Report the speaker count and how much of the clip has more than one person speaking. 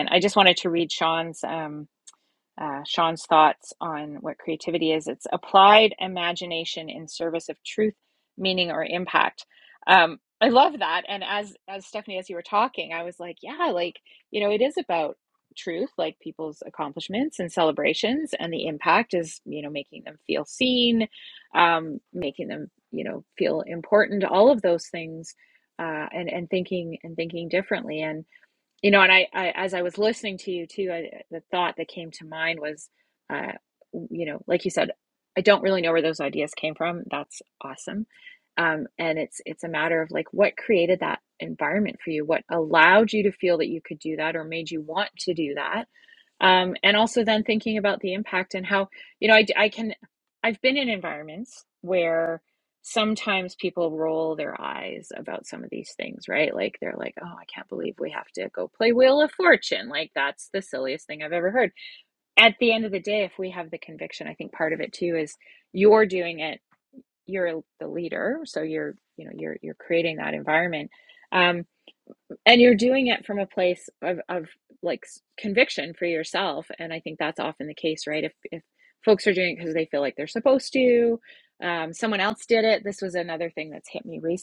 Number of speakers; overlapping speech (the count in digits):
1, no overlap